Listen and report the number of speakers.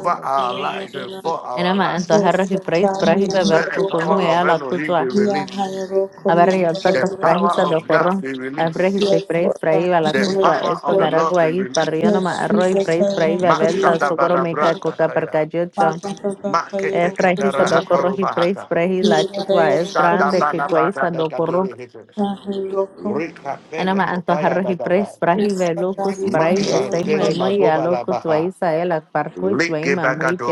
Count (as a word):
three